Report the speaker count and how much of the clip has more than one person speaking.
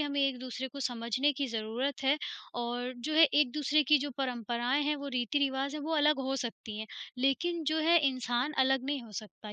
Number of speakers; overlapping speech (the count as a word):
one, no overlap